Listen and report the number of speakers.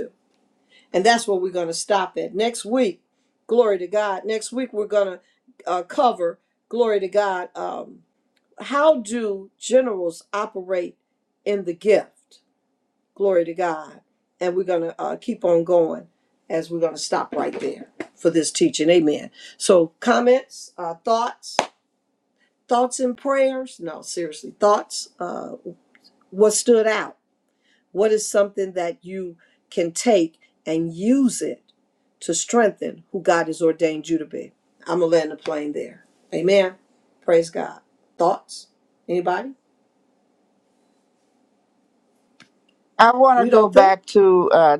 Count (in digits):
2